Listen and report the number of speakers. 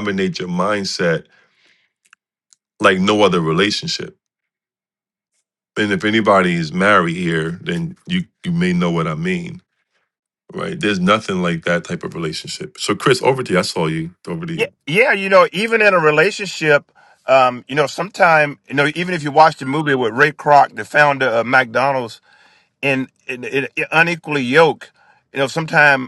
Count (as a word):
two